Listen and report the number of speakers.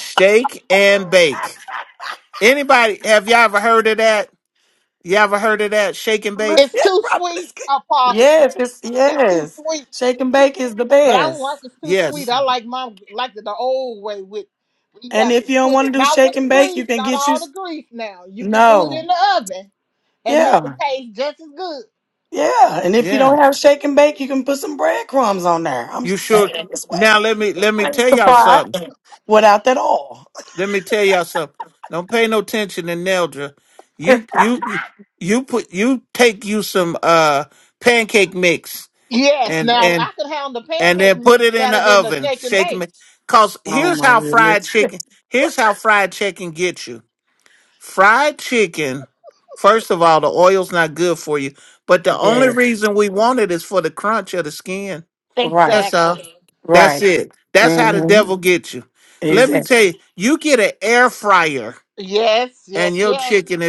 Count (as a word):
three